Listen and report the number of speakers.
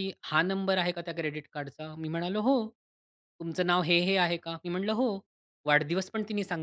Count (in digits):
1